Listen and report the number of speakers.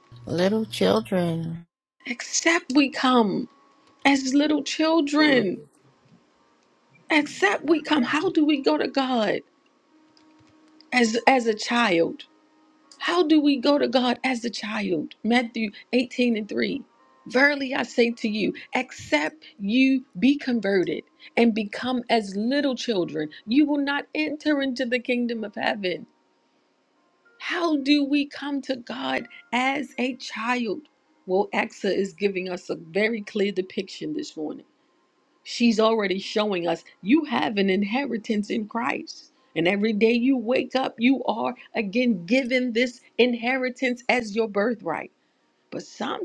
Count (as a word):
two